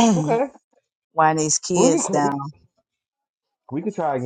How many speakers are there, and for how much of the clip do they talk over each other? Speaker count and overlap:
two, about 14%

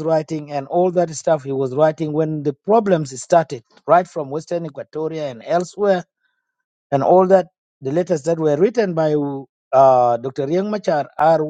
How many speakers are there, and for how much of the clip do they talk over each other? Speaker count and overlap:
one, no overlap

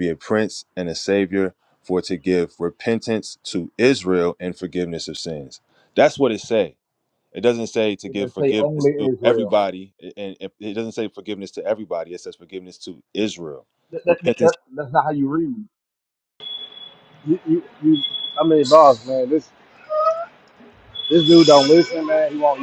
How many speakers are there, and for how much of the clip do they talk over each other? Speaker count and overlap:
three, about 8%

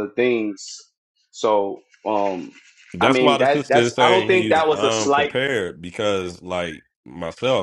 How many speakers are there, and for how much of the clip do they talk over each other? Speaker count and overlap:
two, about 31%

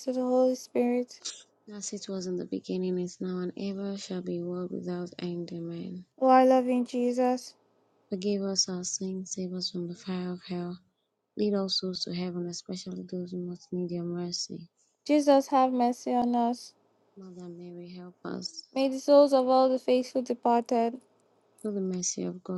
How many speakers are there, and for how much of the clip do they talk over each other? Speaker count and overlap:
two, no overlap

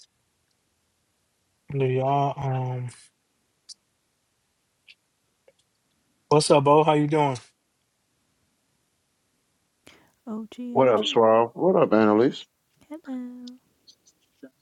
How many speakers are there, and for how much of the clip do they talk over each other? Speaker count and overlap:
three, about 3%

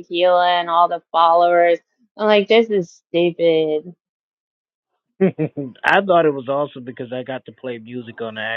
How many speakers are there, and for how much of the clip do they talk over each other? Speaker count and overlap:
two, no overlap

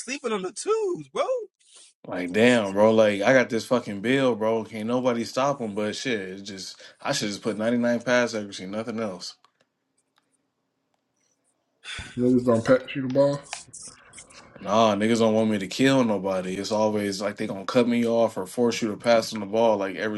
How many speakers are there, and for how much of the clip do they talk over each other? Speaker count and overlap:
three, under 1%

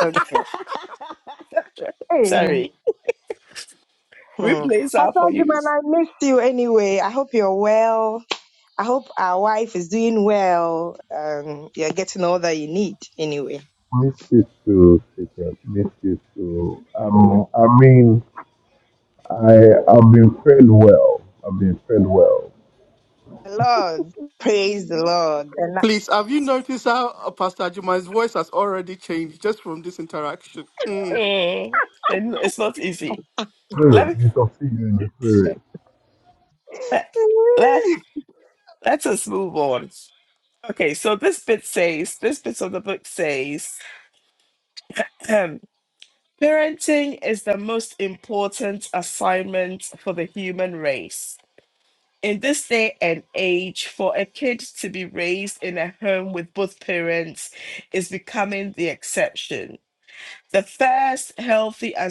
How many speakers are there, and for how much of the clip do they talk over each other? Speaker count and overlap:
four, about 3%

